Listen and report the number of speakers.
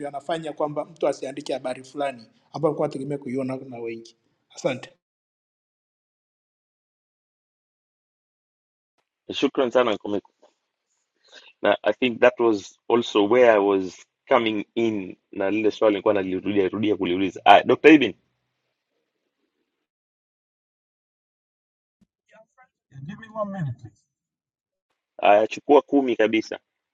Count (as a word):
three